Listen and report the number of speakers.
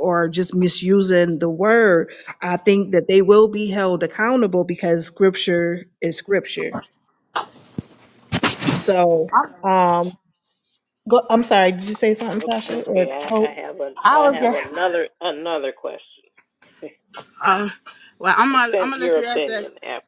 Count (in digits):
3